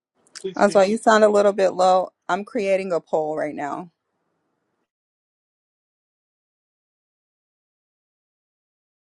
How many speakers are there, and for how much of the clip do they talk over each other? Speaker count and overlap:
one, no overlap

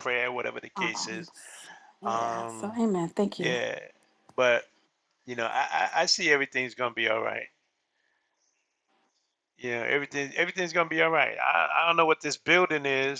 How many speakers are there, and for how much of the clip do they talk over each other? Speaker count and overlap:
two, about 10%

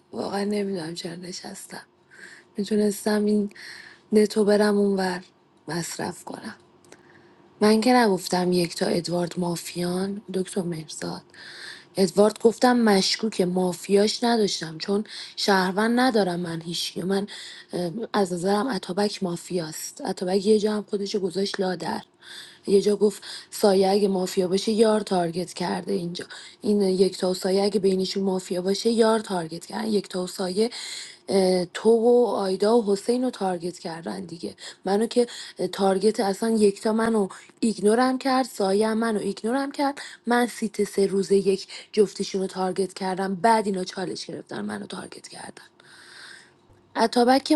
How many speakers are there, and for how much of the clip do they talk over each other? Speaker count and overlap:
one, no overlap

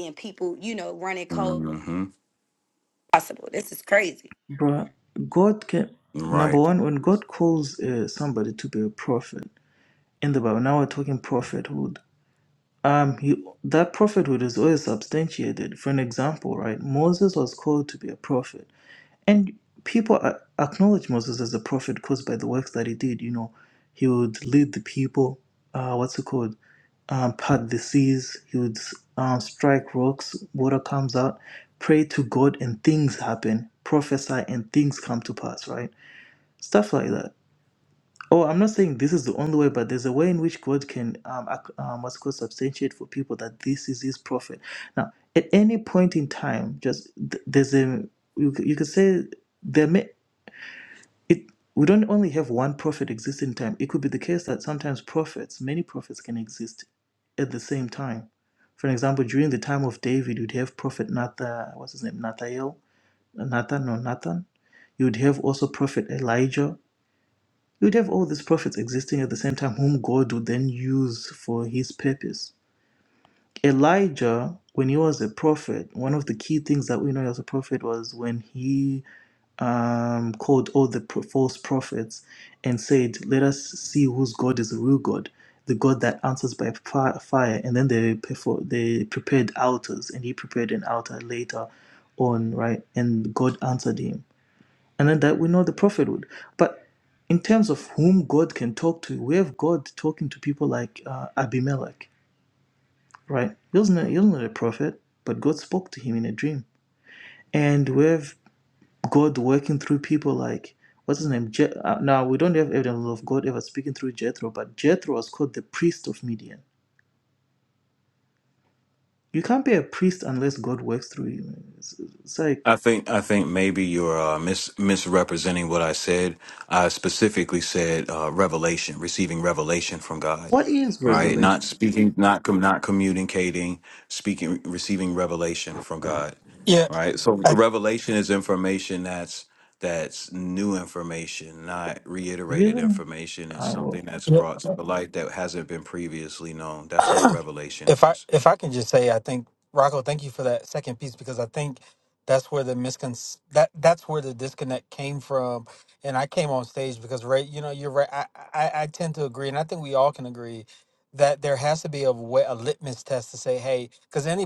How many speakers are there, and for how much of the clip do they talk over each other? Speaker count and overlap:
four, about 2%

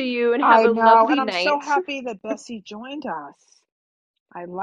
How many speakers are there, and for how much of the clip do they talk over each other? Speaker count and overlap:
two, about 30%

